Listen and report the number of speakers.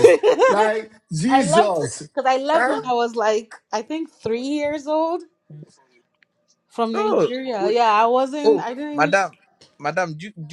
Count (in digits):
3